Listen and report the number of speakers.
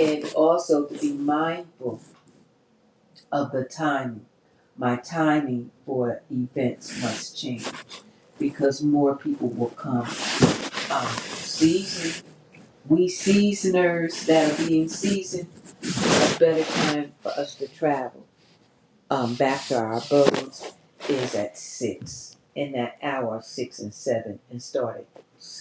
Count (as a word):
one